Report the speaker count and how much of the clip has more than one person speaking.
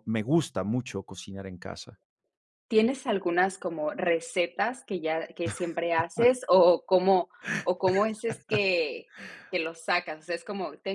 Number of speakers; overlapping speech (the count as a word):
two, no overlap